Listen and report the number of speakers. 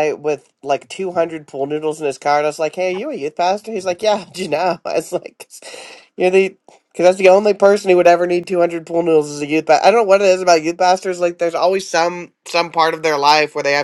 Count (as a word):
one